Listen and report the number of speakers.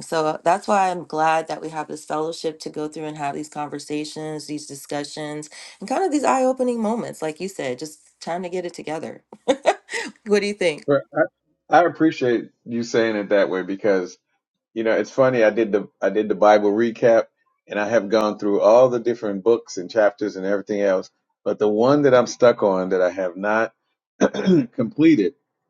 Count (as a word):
two